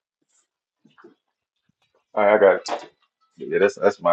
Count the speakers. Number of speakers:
one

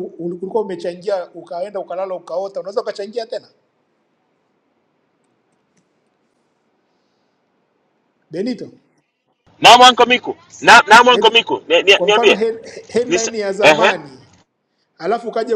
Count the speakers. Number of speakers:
two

